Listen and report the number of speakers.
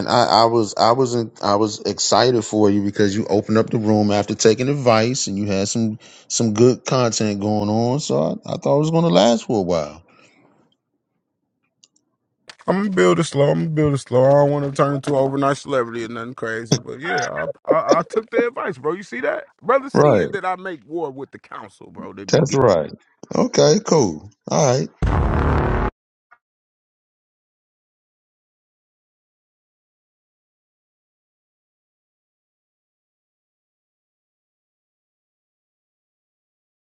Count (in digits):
2